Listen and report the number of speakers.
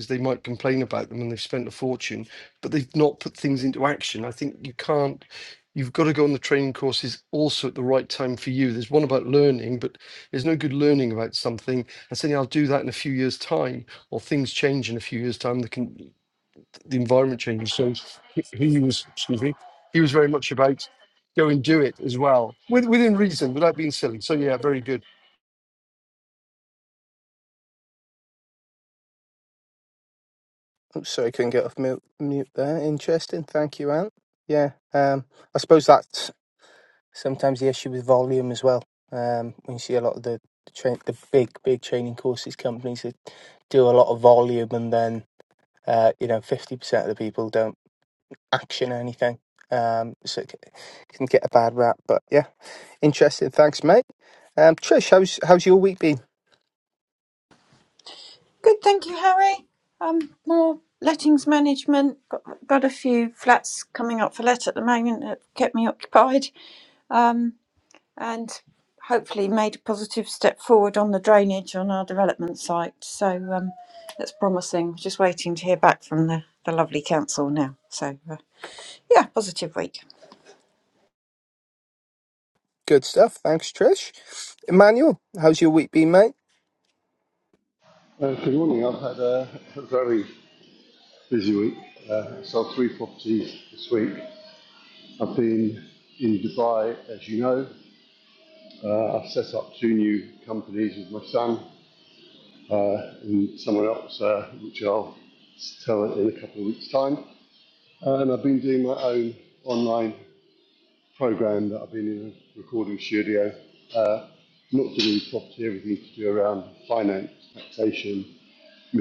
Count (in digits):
4